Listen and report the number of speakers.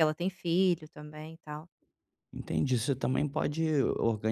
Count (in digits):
2